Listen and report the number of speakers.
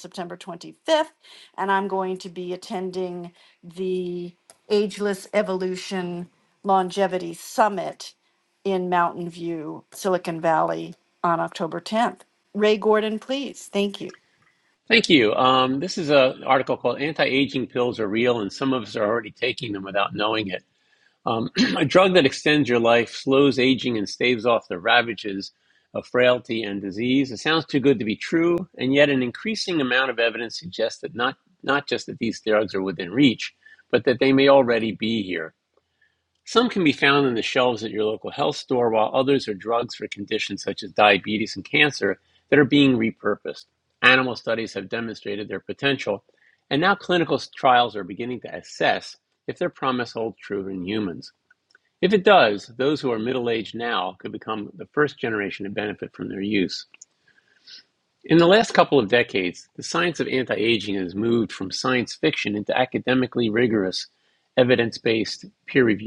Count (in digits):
2